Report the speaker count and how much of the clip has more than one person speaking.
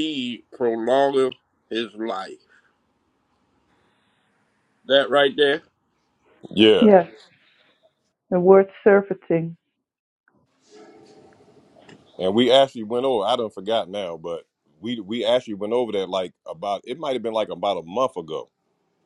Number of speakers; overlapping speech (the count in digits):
3, about 1%